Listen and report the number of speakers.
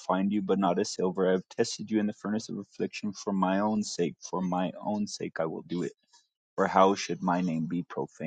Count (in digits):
1